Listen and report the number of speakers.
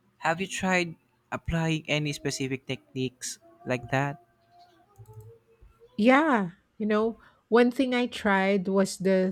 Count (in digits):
2